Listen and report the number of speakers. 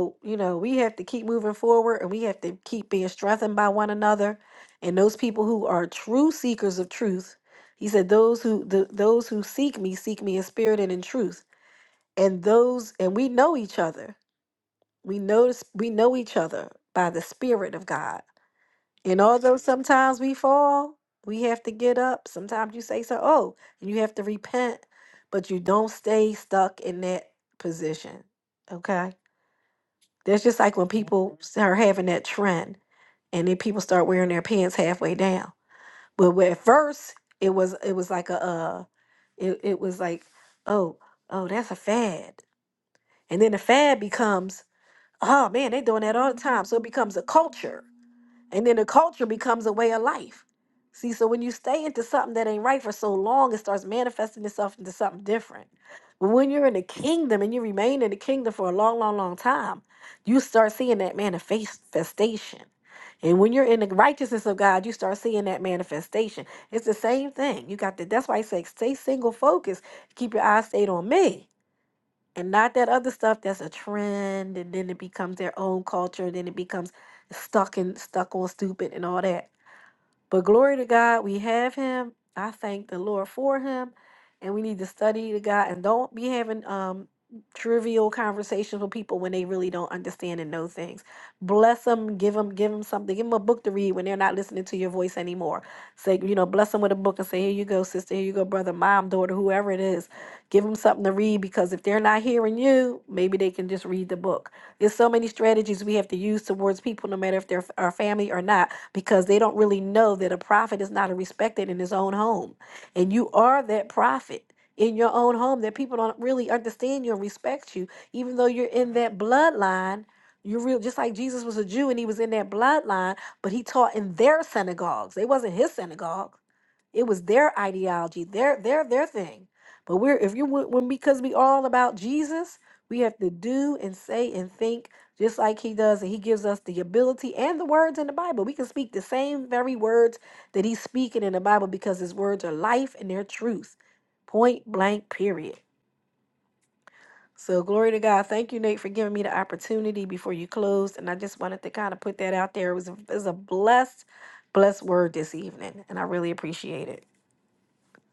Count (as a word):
one